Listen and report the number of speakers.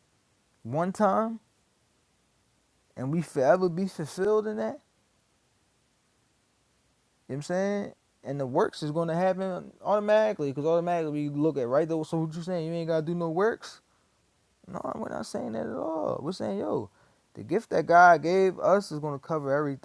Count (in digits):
1